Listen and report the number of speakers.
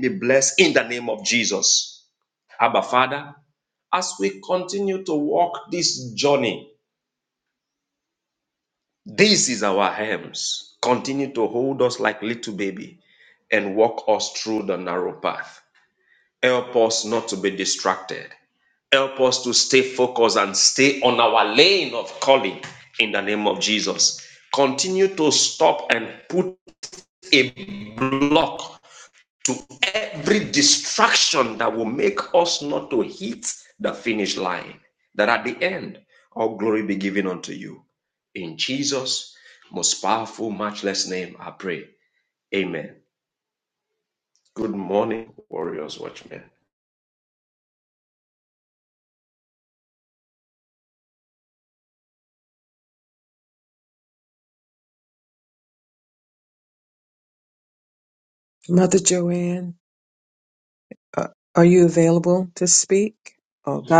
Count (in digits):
2